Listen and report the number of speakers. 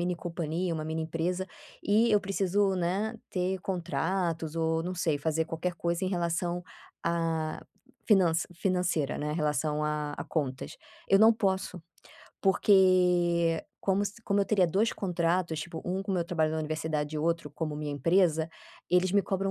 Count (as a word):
one